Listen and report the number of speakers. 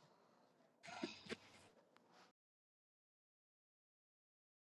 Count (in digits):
0